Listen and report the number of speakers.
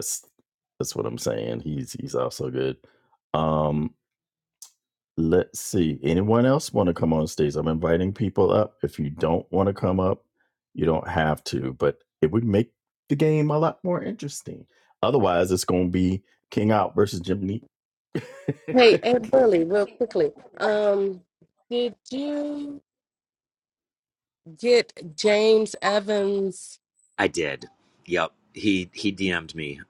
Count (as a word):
three